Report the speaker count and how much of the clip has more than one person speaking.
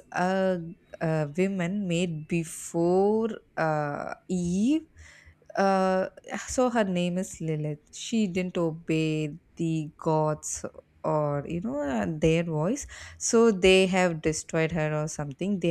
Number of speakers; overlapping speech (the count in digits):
1, no overlap